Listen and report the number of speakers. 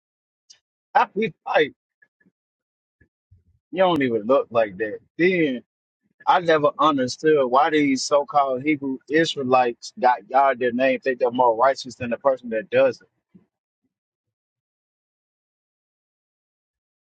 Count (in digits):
1